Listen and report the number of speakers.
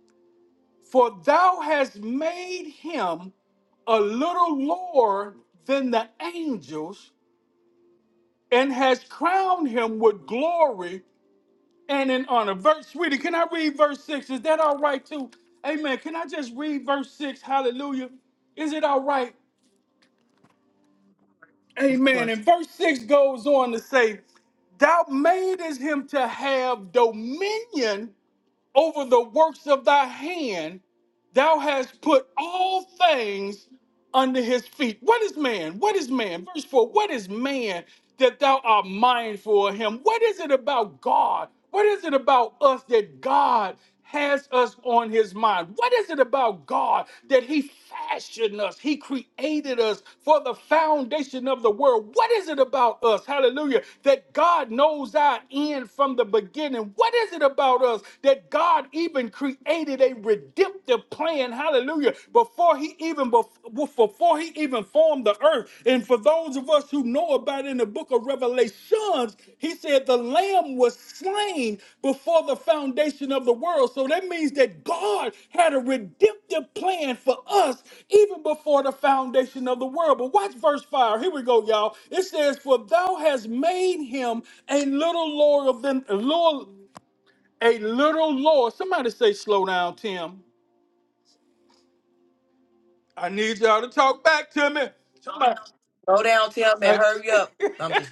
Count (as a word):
two